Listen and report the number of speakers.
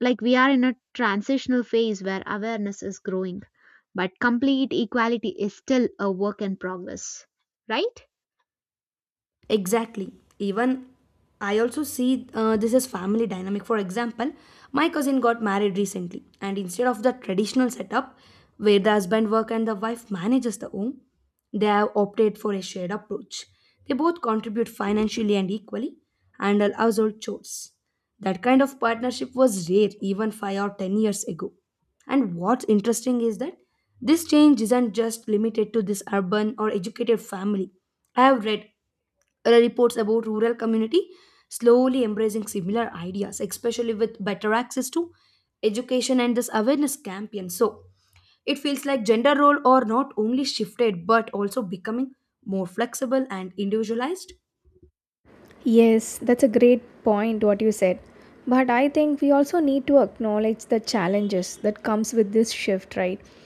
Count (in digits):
3